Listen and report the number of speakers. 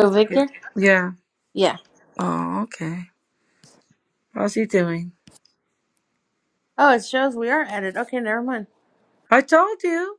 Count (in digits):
2